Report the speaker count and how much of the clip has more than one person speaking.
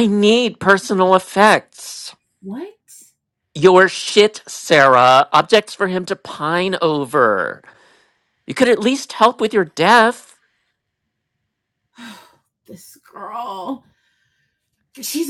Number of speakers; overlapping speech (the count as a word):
two, no overlap